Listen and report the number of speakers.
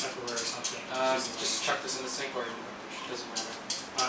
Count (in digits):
2